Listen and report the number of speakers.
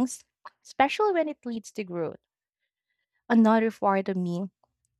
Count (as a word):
one